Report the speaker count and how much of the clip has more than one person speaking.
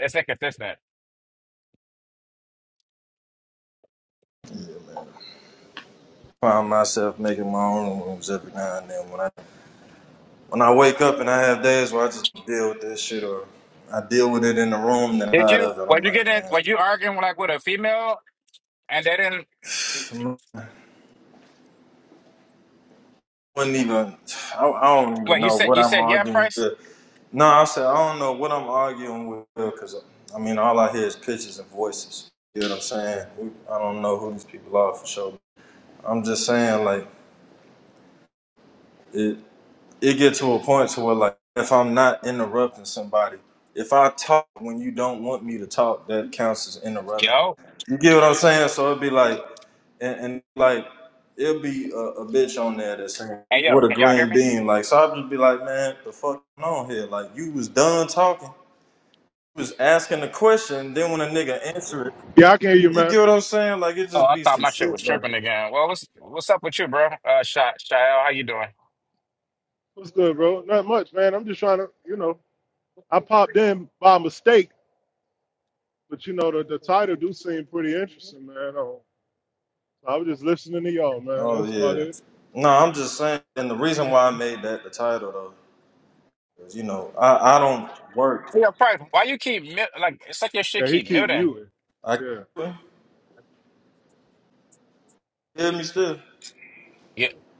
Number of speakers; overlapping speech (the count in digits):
3, about 7%